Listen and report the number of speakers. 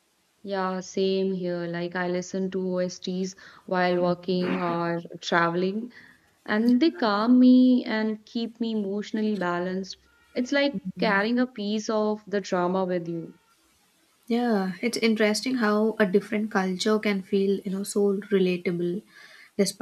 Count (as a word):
two